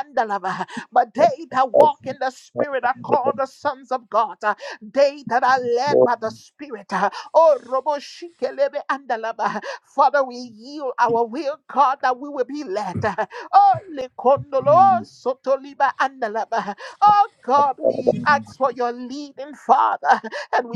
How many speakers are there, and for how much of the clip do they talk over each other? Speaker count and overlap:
1, no overlap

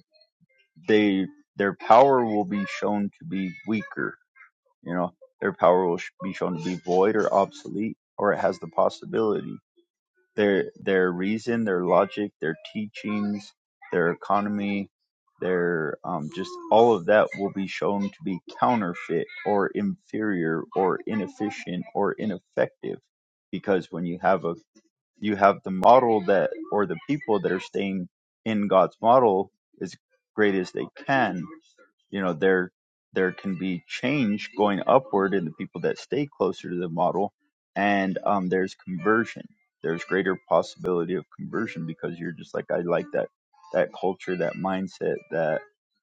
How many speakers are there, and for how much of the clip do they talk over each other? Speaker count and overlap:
1, no overlap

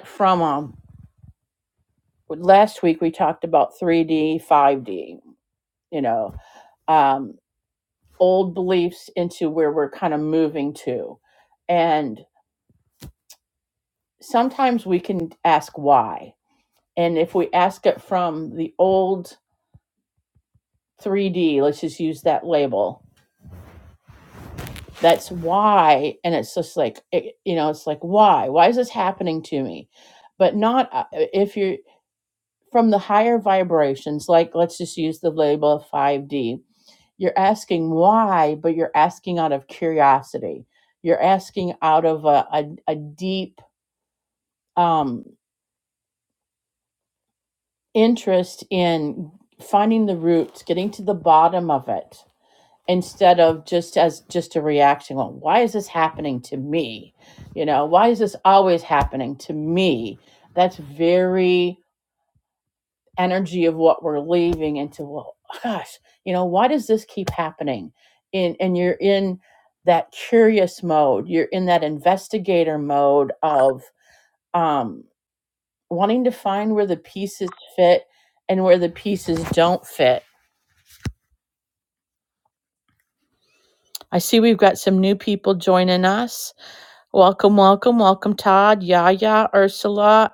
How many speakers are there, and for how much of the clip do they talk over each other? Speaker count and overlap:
1, no overlap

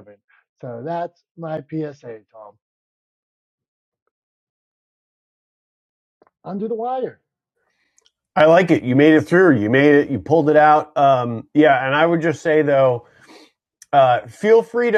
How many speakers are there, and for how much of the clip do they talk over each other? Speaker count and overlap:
2, no overlap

